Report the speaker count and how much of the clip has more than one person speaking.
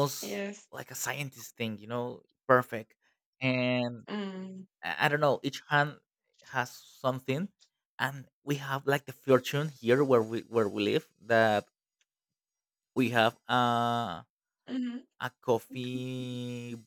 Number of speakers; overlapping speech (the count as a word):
two, no overlap